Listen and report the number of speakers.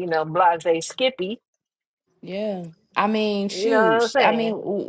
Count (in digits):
2